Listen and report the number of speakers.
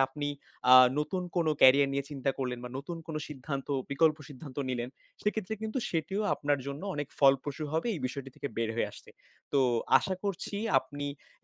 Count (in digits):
1